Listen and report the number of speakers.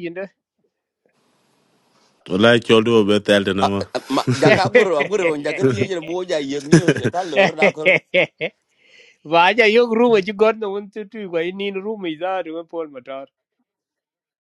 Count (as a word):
three